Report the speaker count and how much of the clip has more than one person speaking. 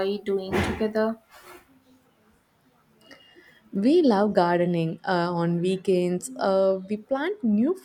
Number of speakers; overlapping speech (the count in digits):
2, no overlap